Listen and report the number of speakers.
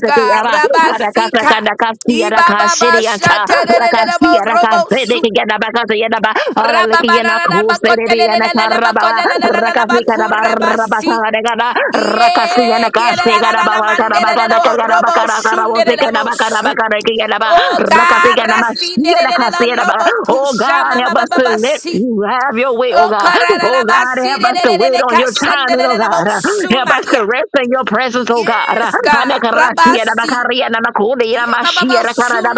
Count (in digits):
2